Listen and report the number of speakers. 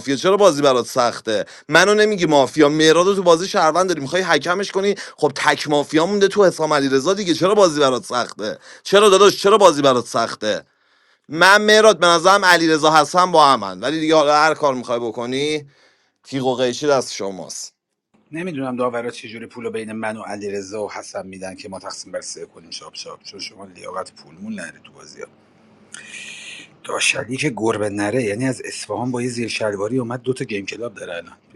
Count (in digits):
2